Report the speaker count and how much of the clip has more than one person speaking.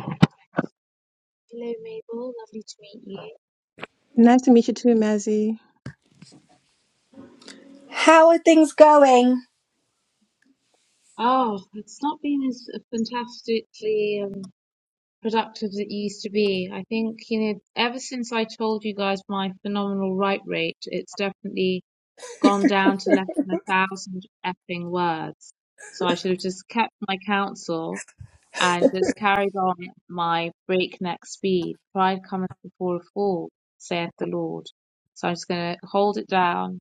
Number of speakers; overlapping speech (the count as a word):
three, no overlap